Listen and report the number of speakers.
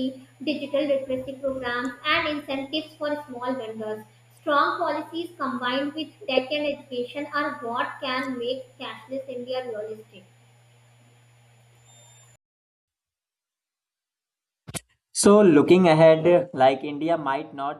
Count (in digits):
2